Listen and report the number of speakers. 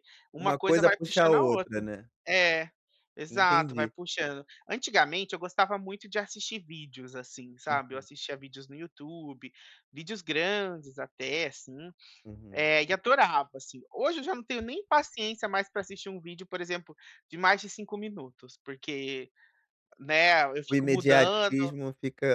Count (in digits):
2